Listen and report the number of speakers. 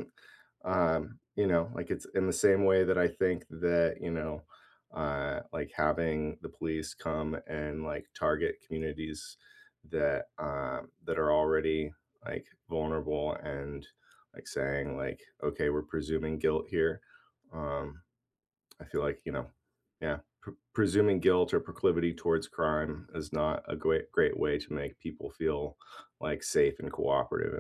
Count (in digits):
1